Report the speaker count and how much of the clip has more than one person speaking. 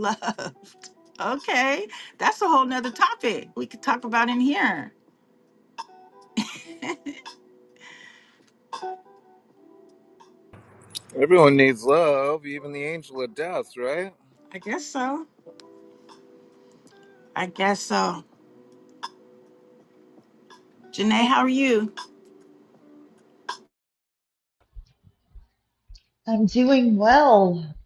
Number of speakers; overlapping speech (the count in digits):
3, no overlap